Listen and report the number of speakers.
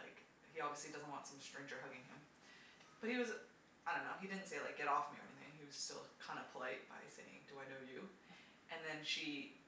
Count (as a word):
one